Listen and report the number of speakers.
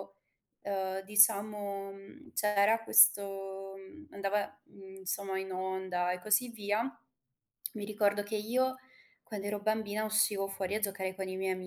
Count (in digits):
1